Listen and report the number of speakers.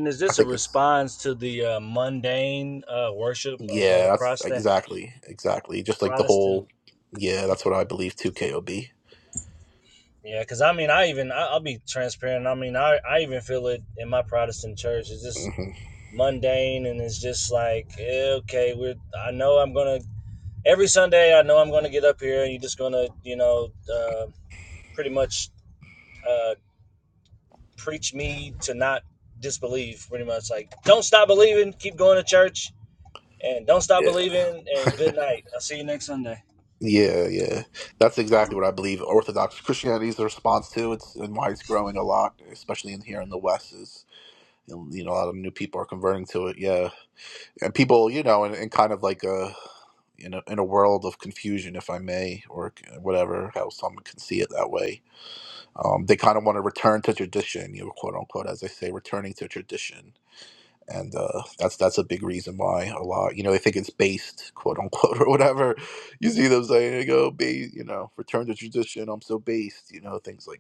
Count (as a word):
two